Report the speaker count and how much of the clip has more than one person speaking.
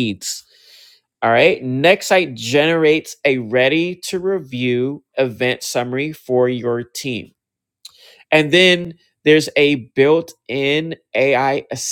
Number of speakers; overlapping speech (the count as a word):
one, no overlap